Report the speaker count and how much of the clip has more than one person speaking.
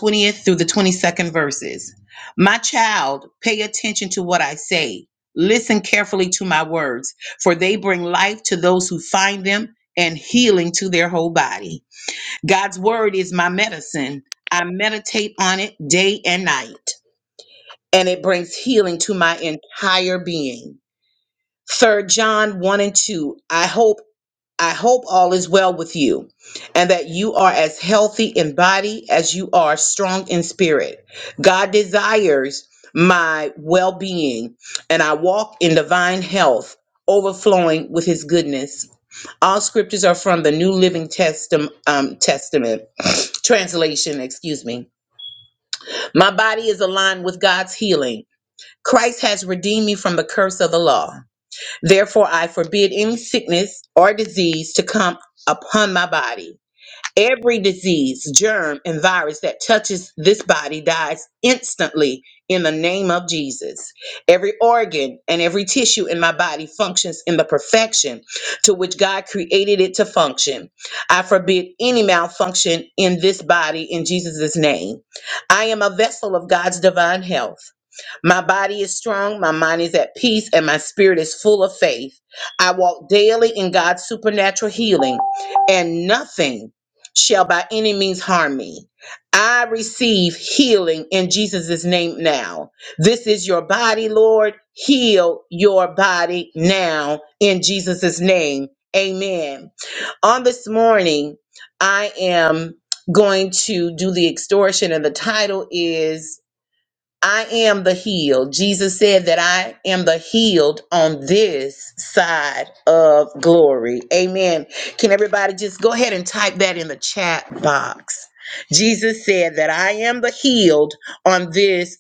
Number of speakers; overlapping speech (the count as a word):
one, no overlap